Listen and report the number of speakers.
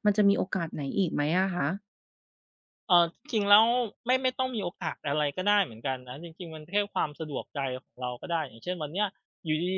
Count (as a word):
two